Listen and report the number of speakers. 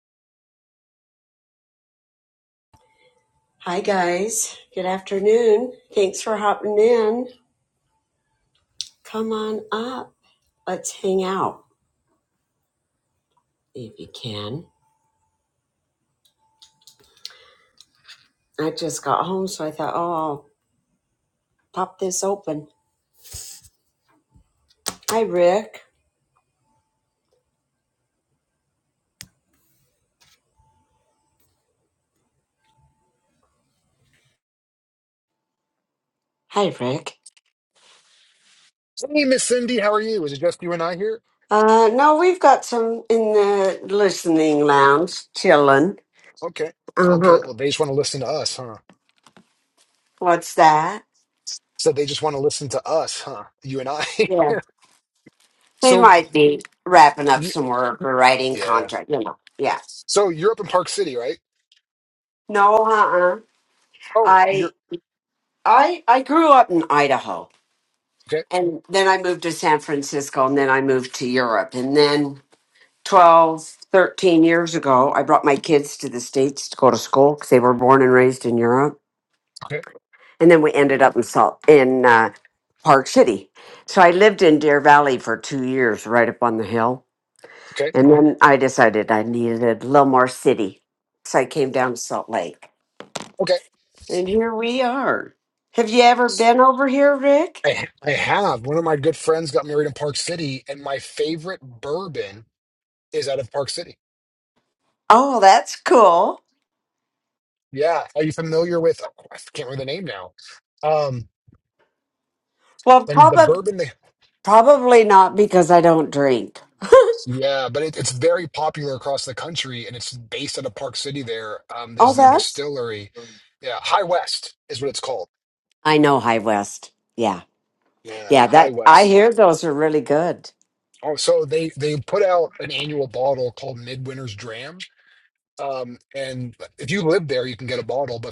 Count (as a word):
two